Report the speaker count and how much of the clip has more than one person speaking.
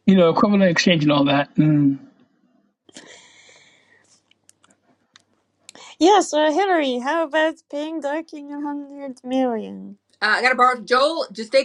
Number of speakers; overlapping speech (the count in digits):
3, no overlap